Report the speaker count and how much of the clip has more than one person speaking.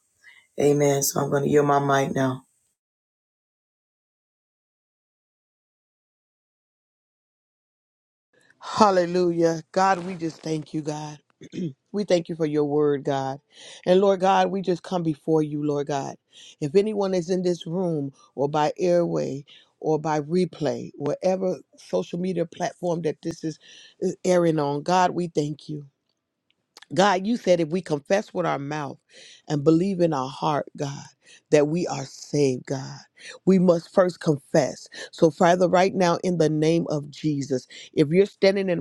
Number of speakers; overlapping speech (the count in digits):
2, no overlap